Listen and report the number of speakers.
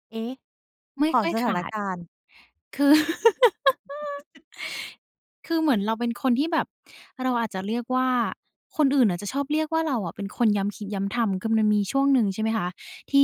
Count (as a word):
two